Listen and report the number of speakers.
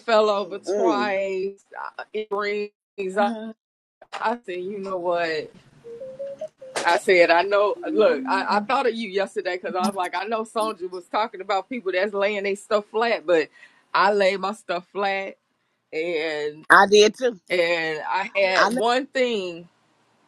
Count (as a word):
two